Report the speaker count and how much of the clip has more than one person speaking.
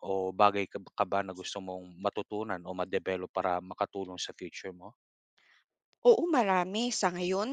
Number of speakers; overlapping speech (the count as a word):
two, no overlap